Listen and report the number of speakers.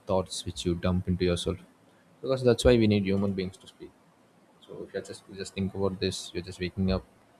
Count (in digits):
1